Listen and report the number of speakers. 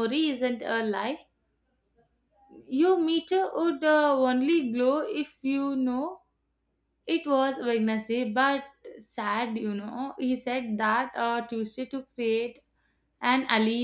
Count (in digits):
1